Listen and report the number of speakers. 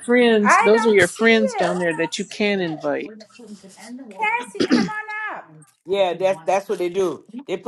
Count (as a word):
three